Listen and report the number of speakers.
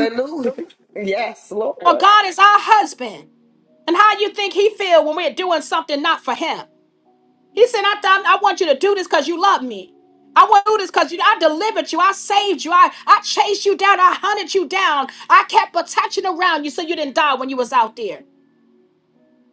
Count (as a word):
two